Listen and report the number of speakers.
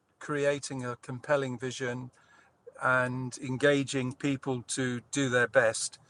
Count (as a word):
one